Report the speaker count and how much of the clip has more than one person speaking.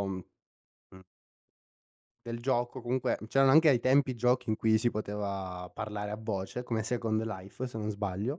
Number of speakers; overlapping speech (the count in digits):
1, no overlap